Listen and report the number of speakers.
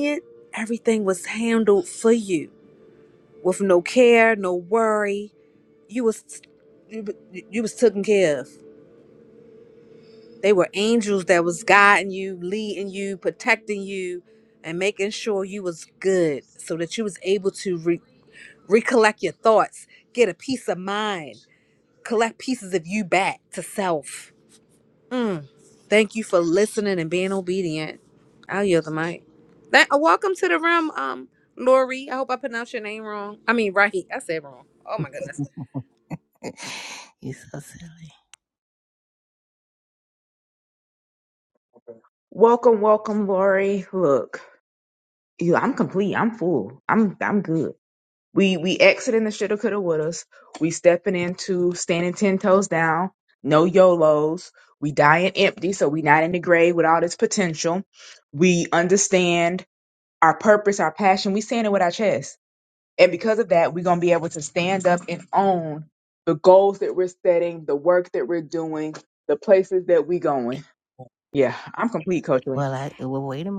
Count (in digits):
3